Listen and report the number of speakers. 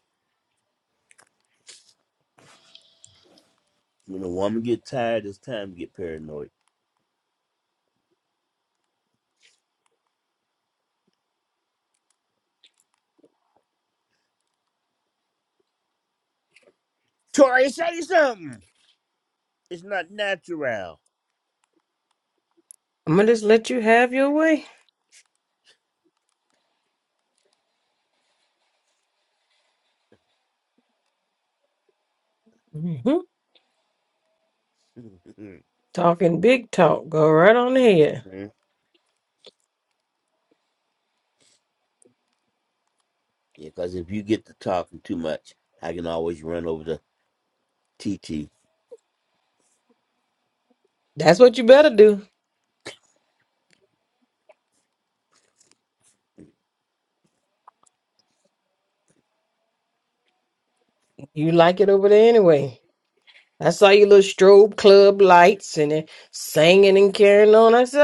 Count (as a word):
two